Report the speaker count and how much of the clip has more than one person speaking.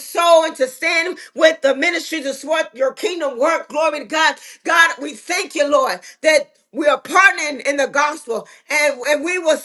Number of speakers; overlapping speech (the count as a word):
one, no overlap